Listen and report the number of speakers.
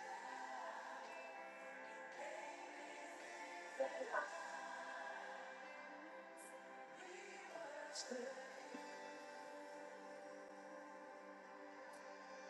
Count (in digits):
0